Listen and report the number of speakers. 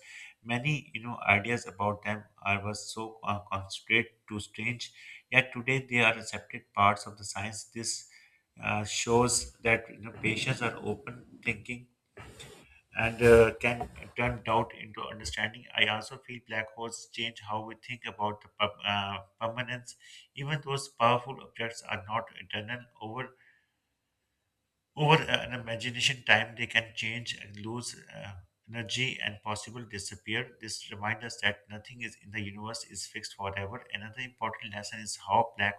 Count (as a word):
one